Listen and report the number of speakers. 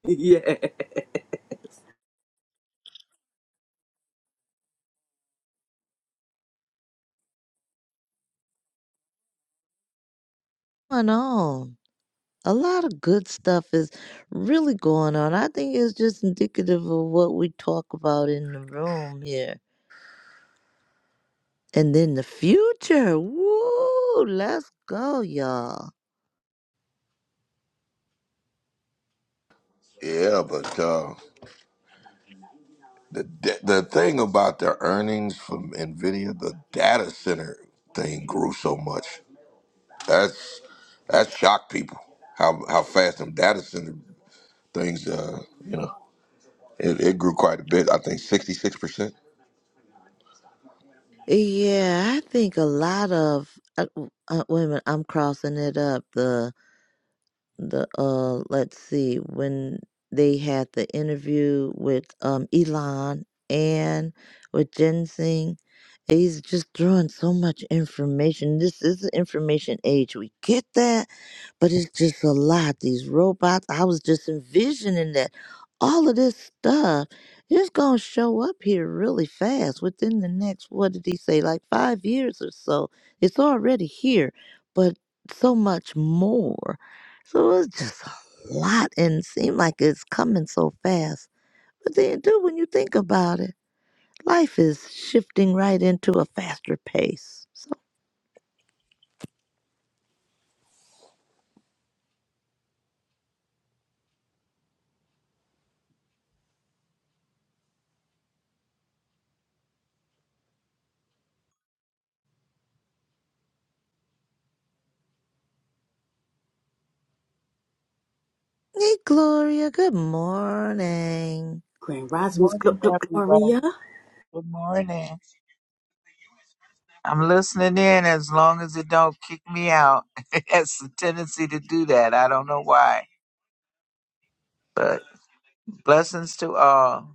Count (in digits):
4